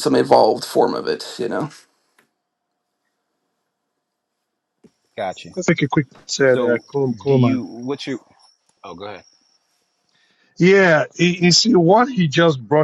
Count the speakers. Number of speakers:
3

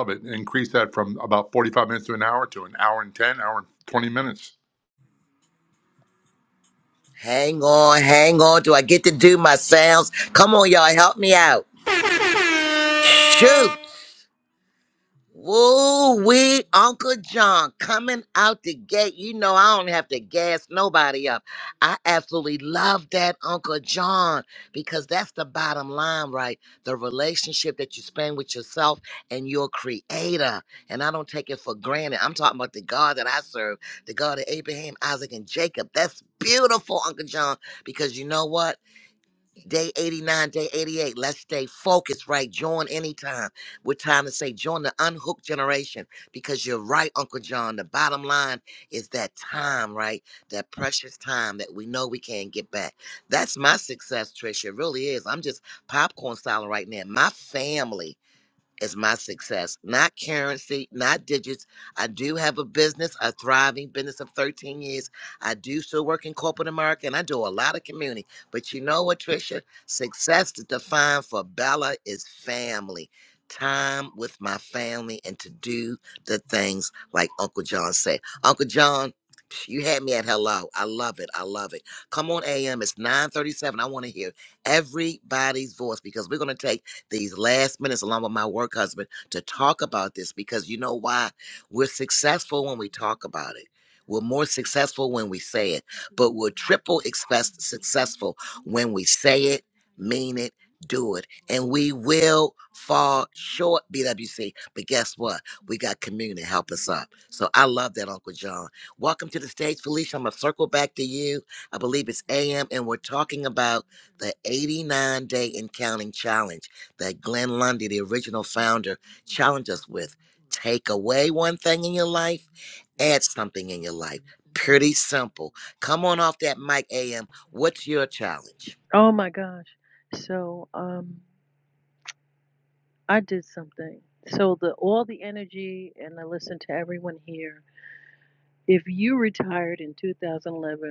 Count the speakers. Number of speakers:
3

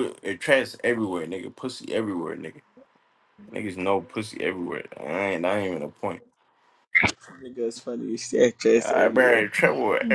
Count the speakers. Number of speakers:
2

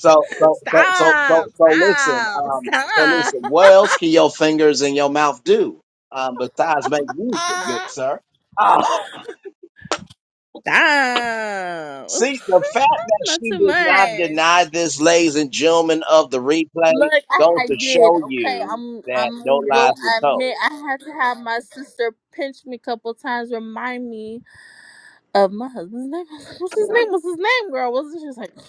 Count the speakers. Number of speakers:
2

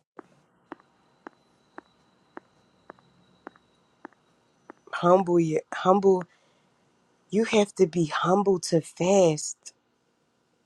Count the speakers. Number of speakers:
1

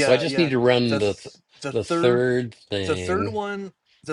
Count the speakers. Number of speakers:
2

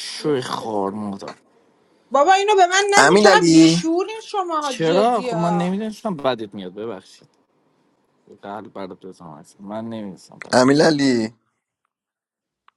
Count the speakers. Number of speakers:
3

